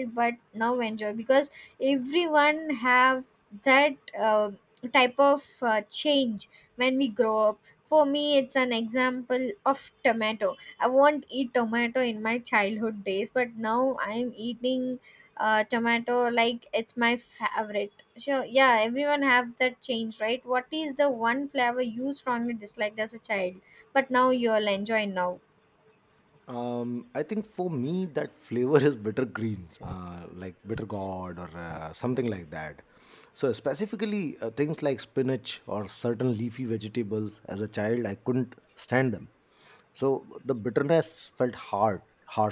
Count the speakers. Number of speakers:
2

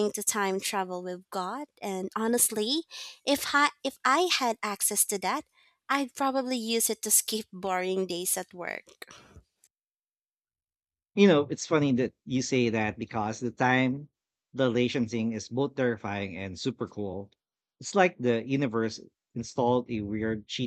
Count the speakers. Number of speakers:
2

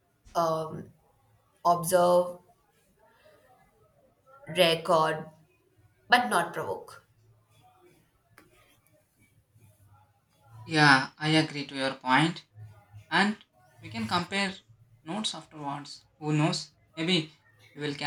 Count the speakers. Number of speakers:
2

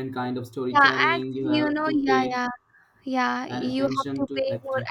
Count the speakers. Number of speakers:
2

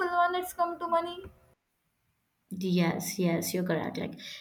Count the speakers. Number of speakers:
2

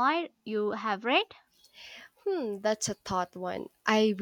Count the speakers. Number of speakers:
2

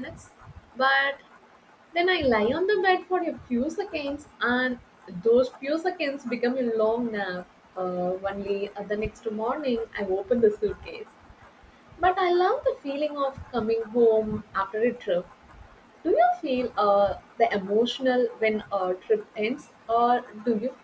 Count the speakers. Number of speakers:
1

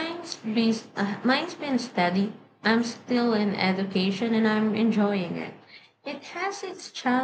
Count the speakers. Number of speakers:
1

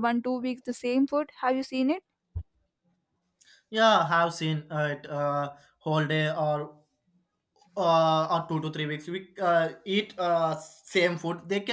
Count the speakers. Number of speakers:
2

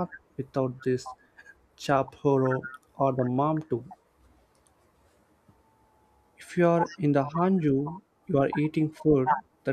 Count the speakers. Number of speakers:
1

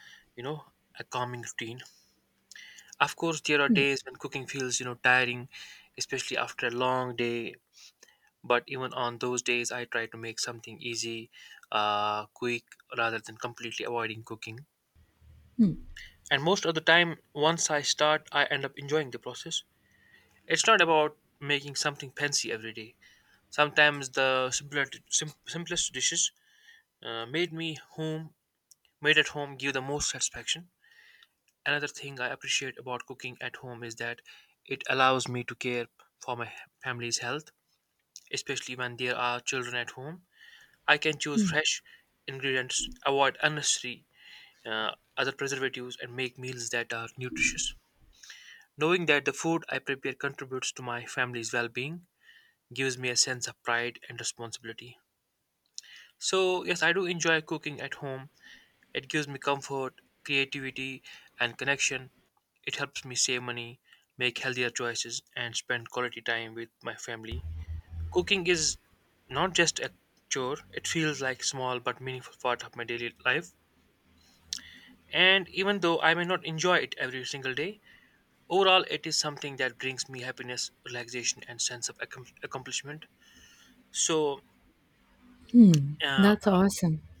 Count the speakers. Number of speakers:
2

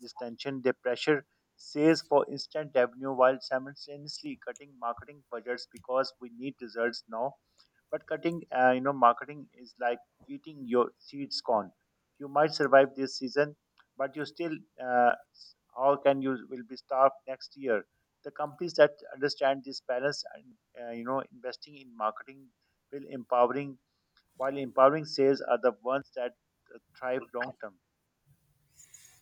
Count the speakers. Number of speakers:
1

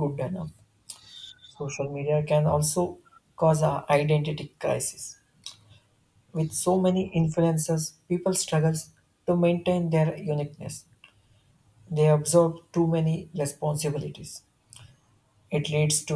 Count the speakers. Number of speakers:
1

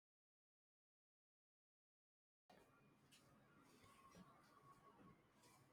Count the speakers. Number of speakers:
0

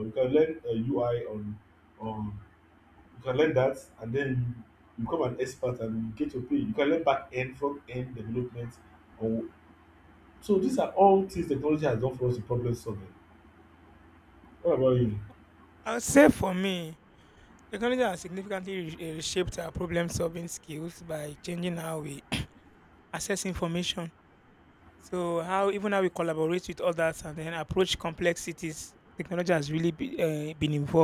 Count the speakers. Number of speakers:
2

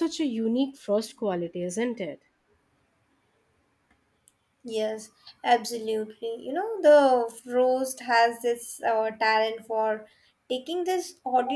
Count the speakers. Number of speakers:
2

